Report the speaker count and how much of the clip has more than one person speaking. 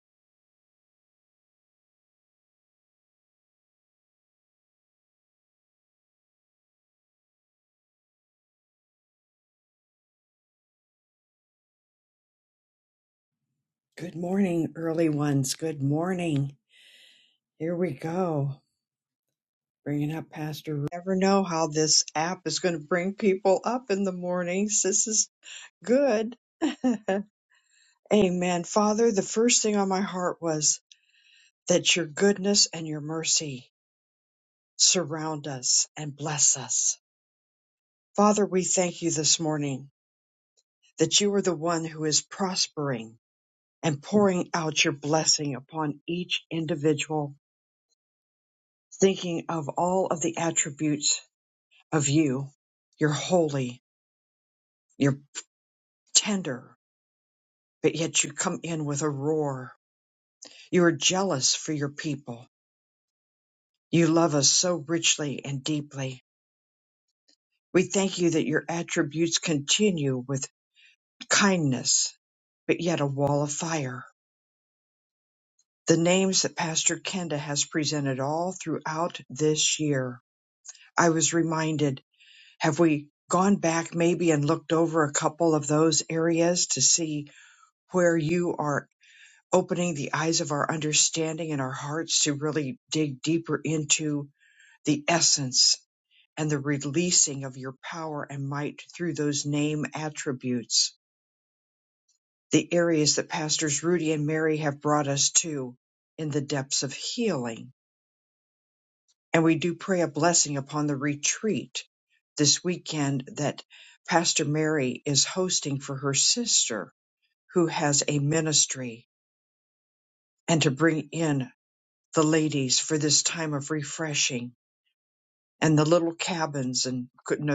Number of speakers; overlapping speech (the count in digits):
1, no overlap